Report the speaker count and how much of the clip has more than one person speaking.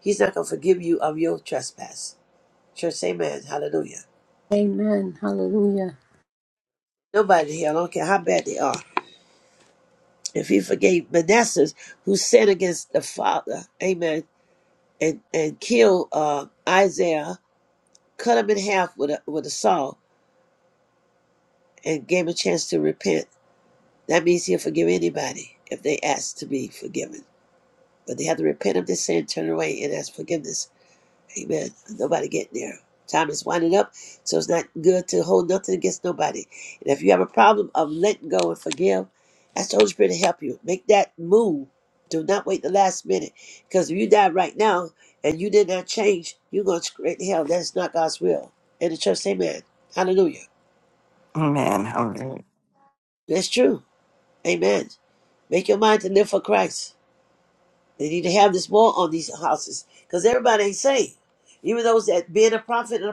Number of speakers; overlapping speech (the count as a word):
three, no overlap